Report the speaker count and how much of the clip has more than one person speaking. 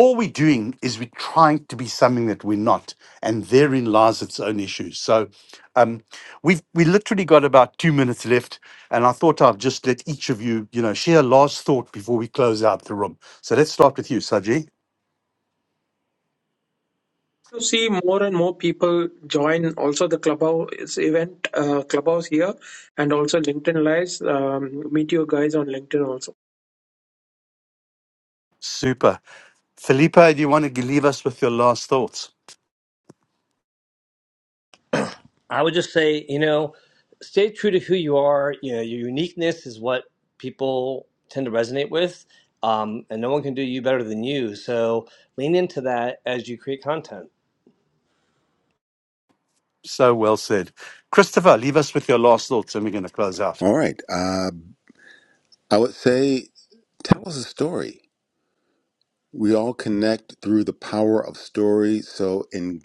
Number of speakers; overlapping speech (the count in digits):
4, no overlap